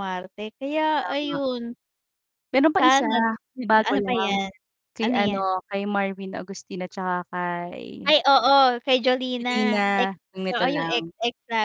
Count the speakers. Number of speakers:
2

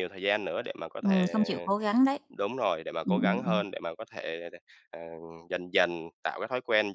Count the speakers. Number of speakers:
2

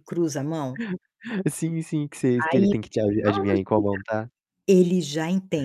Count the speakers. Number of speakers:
2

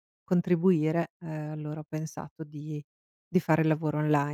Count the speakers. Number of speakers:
1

